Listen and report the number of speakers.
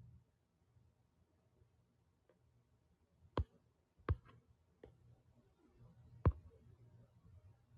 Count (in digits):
0